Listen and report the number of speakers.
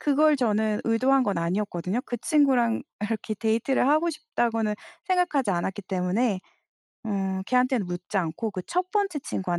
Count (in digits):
1